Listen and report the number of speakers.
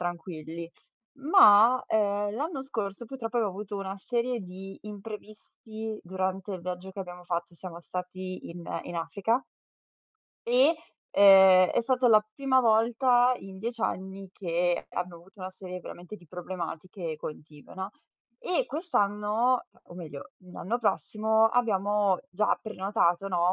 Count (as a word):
one